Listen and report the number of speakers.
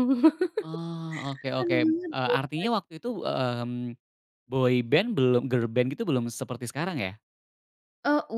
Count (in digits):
2